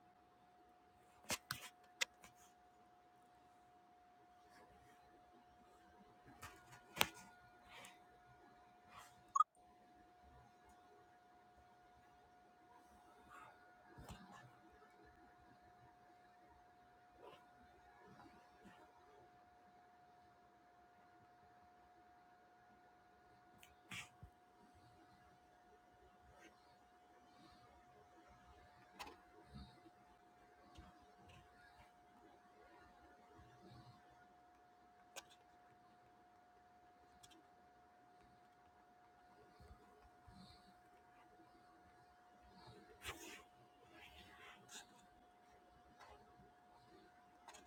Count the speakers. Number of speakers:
zero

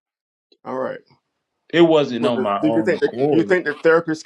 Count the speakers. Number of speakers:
two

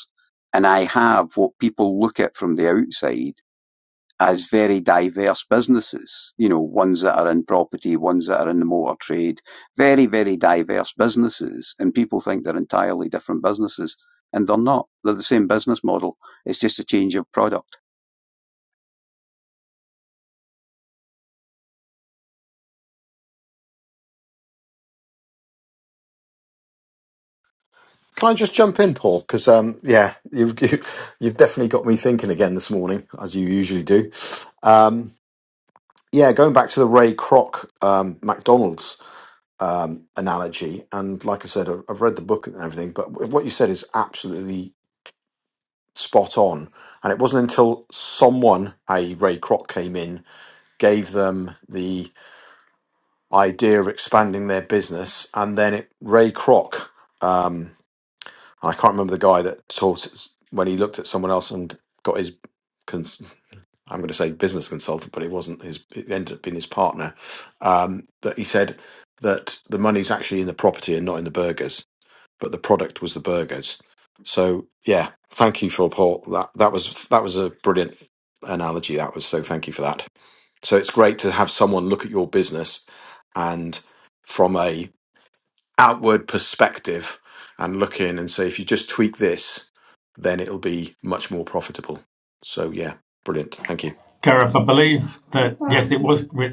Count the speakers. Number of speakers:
three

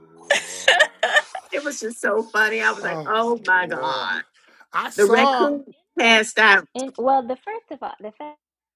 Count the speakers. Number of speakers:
three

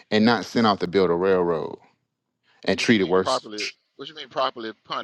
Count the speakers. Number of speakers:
two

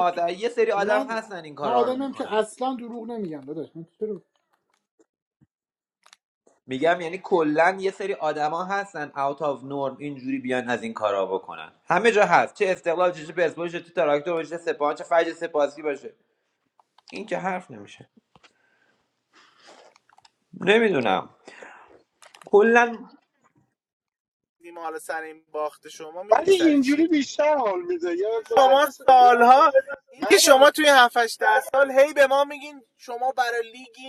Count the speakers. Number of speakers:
four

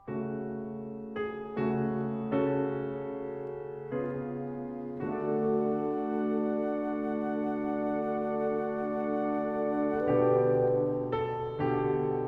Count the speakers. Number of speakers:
zero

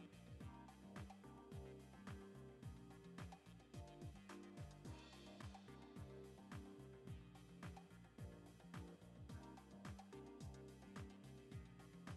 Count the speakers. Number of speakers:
zero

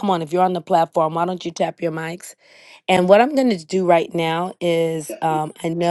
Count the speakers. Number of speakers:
one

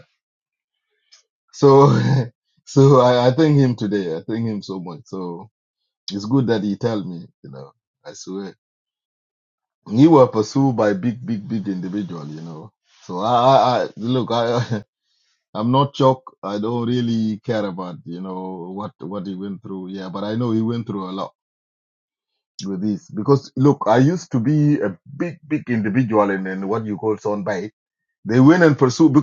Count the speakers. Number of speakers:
one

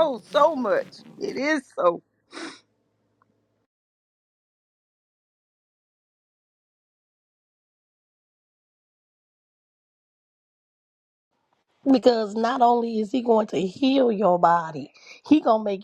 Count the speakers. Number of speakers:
two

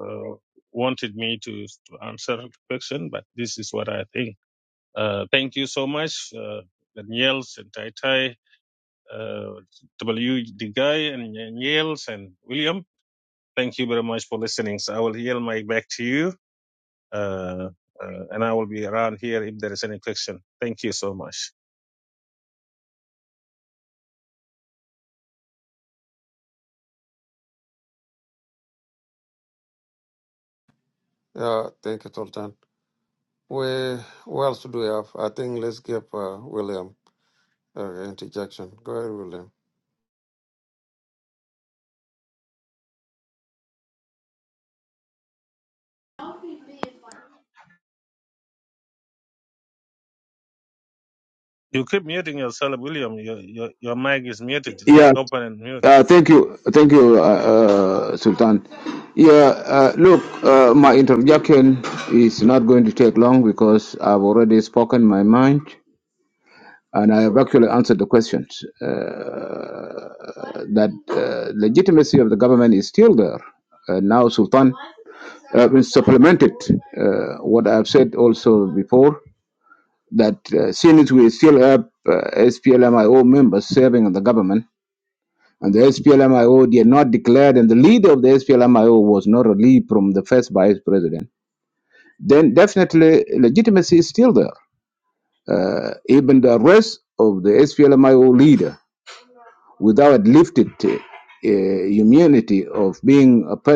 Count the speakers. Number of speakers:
three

